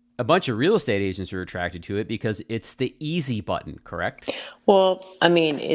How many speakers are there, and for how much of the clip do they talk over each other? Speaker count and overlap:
2, no overlap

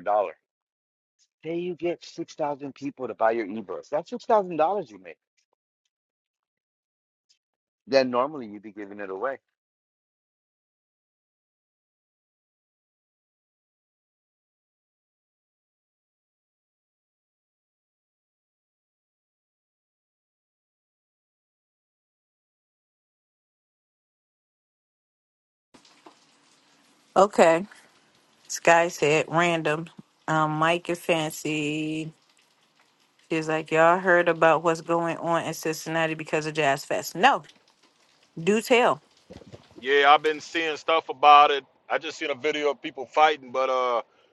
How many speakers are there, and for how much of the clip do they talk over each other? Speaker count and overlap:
3, no overlap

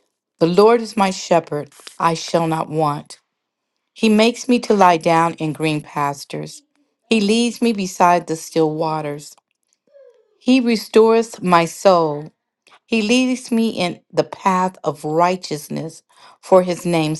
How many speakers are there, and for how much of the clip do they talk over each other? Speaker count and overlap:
1, no overlap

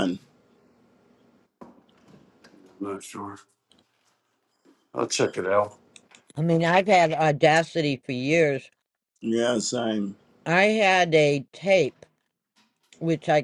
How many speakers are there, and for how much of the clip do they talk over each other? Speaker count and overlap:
3, no overlap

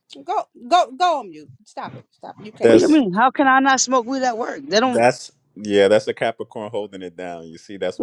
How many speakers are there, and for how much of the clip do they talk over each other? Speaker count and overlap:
3, about 7%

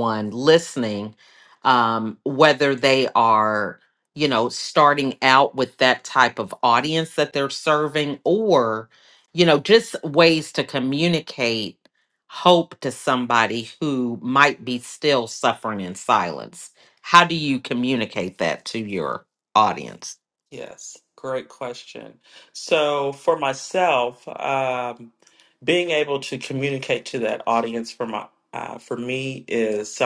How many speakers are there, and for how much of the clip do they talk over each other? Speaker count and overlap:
2, no overlap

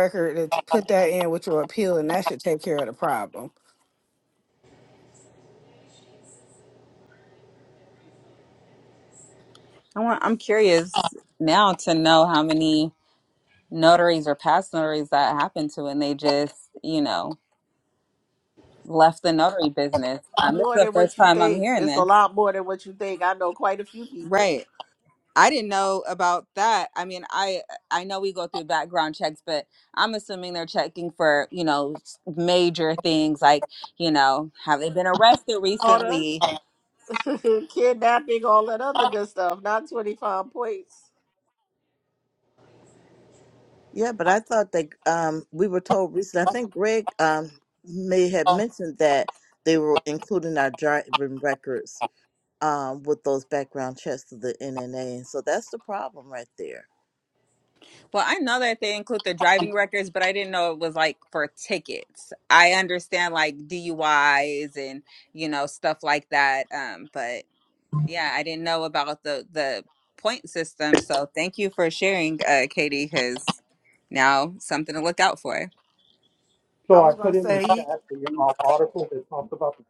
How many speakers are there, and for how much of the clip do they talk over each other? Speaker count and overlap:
5, about 4%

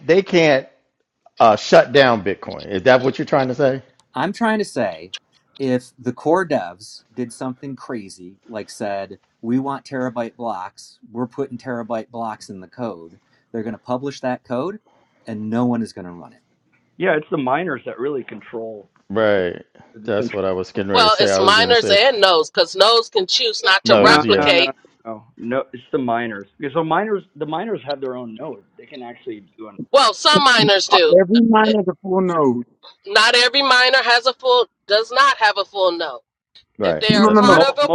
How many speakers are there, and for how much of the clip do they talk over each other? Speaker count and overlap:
5, about 10%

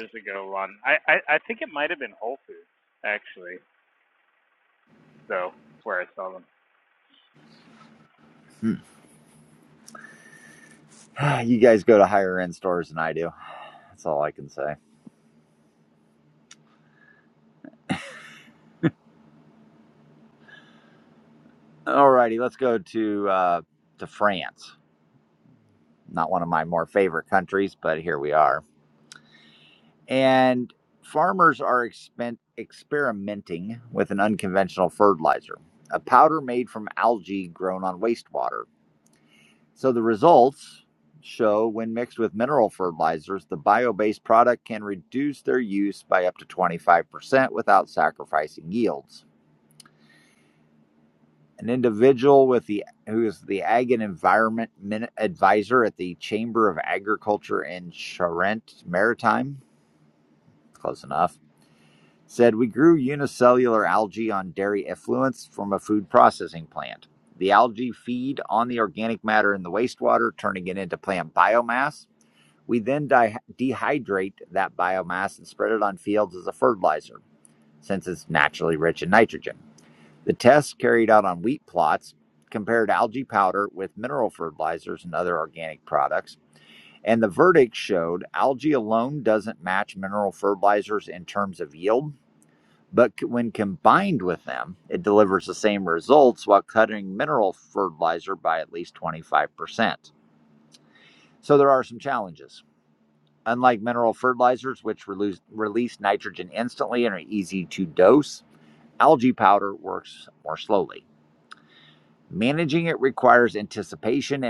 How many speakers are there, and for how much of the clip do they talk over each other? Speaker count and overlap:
2, no overlap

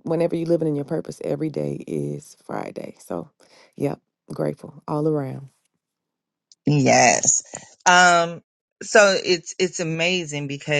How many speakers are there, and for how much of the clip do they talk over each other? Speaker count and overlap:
2, no overlap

